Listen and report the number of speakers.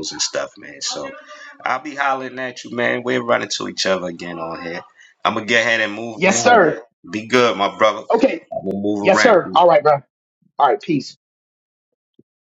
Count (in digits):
2